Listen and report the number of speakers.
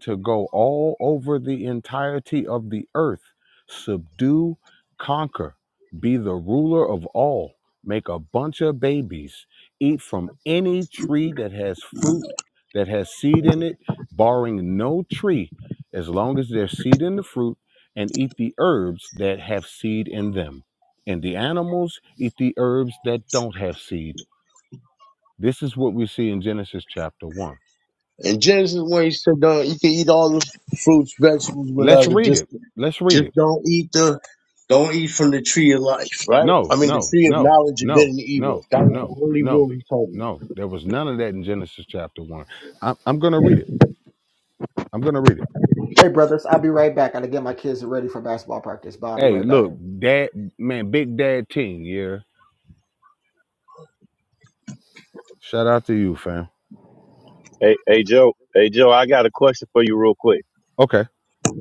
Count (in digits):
4